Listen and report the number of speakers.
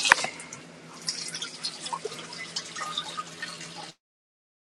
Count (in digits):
0